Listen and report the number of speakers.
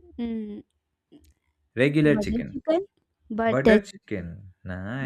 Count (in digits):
2